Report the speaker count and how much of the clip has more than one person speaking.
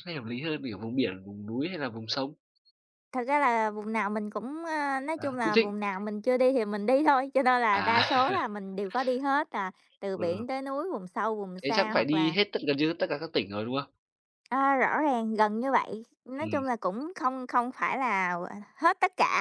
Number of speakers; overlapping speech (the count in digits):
2, about 12%